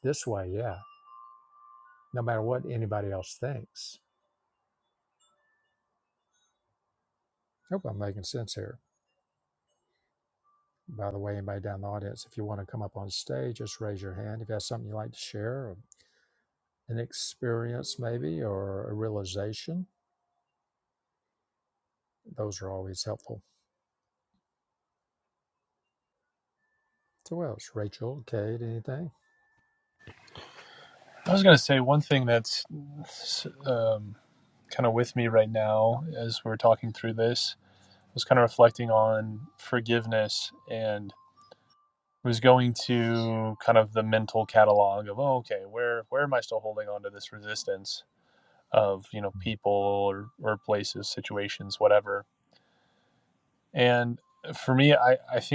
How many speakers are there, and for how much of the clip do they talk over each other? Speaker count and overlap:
2, no overlap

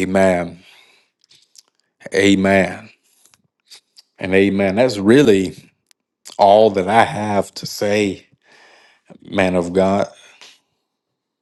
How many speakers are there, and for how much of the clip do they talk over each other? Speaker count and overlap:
1, no overlap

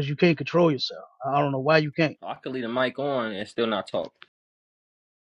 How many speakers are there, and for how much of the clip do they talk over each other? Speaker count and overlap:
2, no overlap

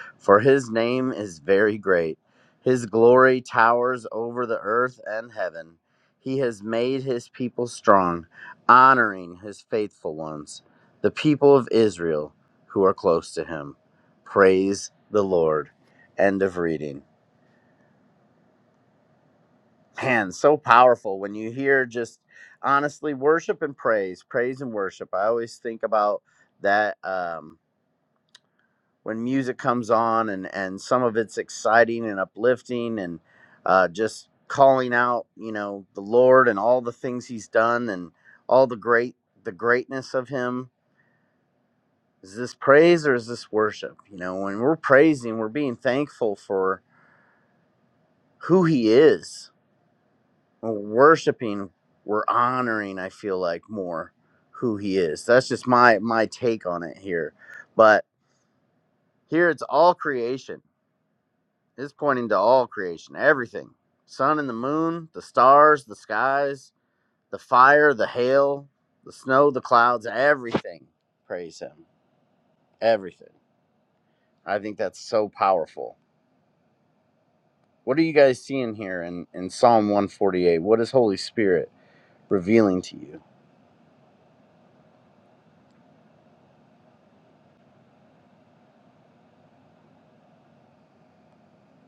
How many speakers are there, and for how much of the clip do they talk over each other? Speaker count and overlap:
1, no overlap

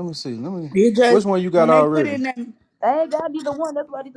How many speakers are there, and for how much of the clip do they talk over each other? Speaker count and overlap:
3, about 17%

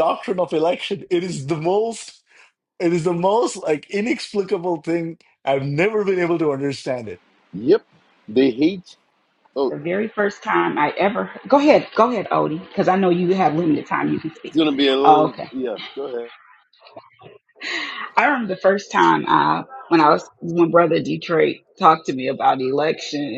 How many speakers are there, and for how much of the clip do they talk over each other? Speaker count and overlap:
3, about 3%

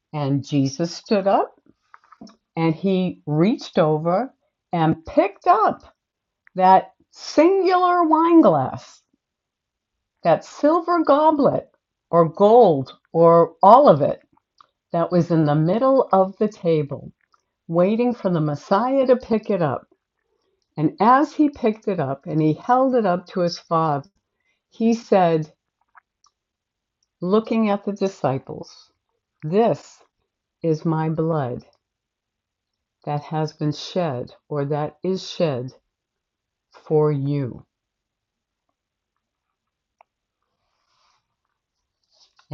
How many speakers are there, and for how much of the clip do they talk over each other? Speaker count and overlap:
1, no overlap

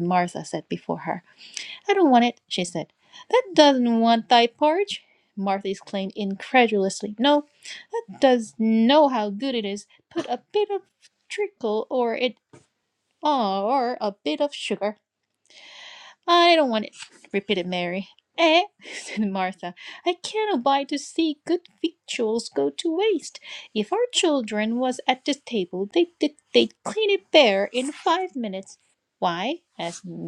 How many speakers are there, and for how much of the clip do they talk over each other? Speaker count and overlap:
1, no overlap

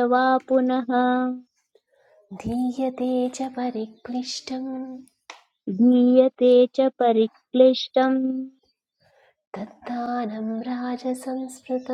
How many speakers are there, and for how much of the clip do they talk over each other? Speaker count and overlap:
2, no overlap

